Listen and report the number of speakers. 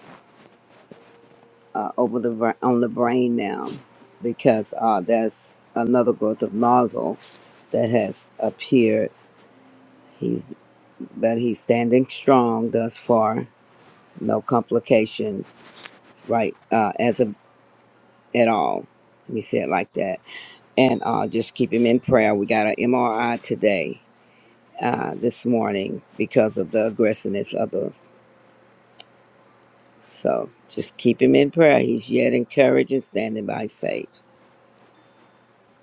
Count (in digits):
1